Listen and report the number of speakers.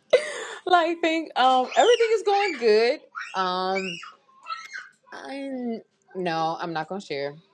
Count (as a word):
one